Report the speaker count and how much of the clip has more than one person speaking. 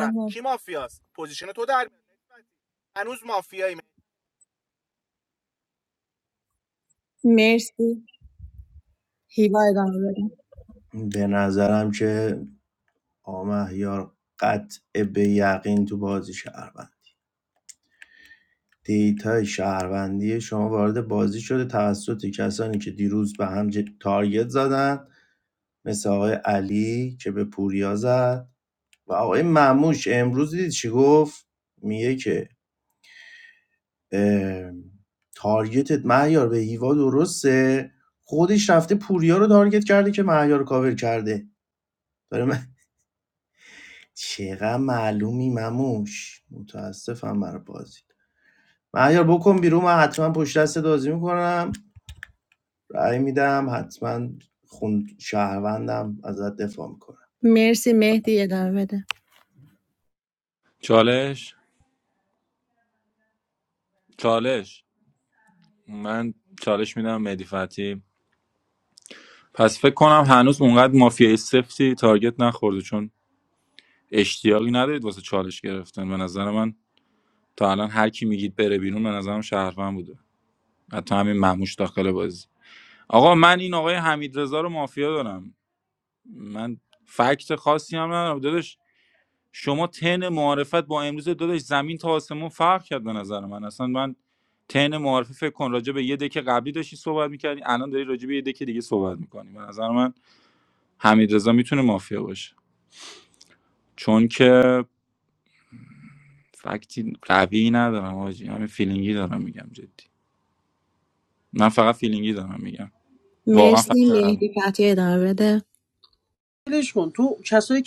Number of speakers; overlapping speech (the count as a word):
five, about 1%